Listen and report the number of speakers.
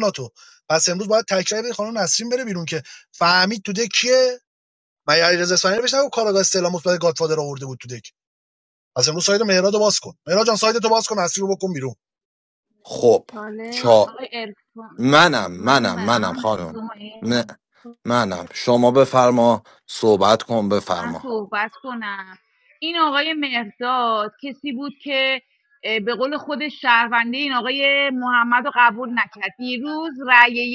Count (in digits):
3